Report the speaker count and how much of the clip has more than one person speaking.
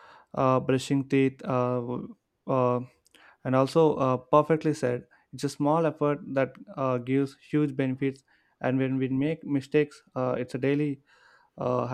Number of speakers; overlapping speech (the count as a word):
one, no overlap